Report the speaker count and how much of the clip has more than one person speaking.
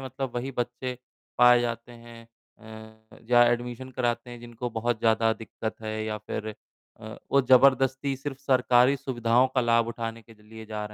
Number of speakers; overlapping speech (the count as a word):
one, no overlap